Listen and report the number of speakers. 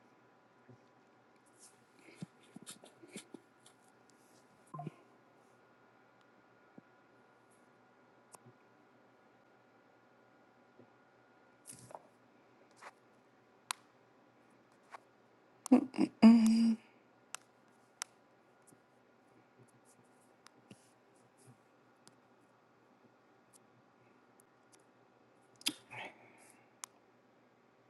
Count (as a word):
zero